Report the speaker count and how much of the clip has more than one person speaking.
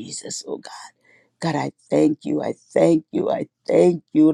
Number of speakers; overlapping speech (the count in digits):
1, no overlap